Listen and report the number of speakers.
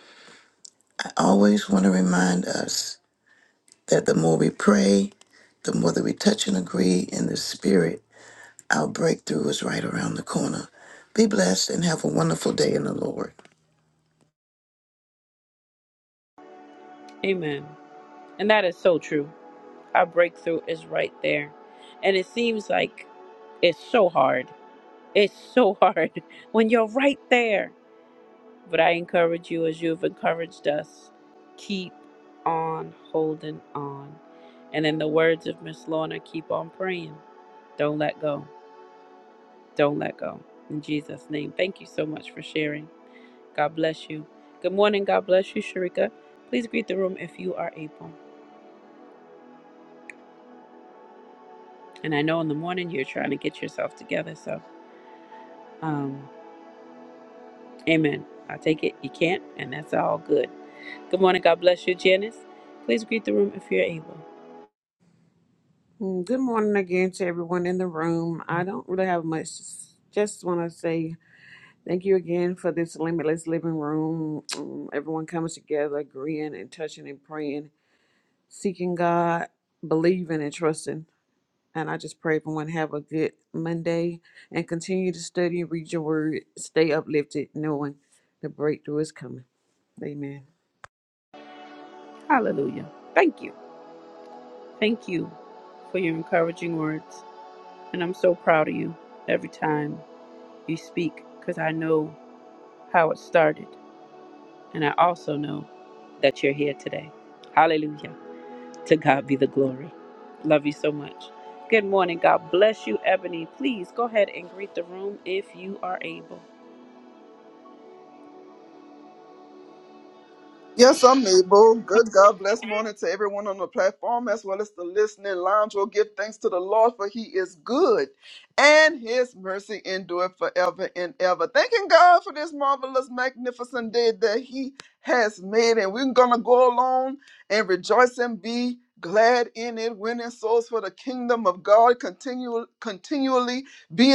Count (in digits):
4